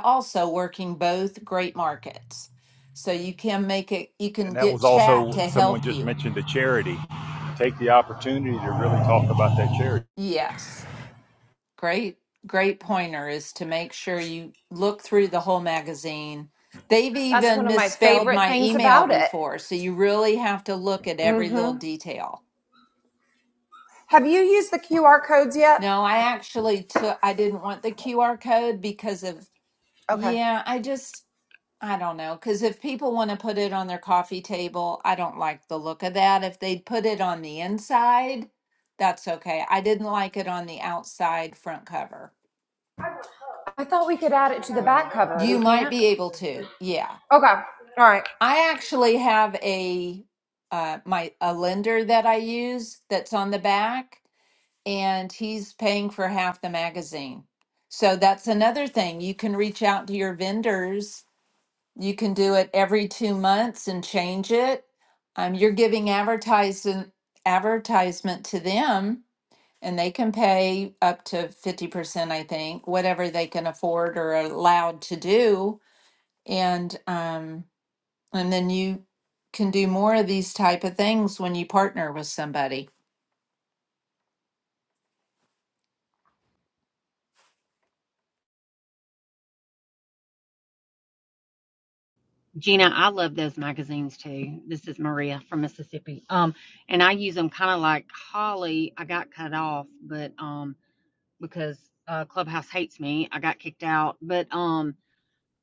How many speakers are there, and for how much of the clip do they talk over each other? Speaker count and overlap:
four, about 5%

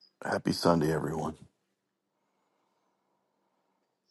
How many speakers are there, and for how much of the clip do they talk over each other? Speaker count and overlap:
one, no overlap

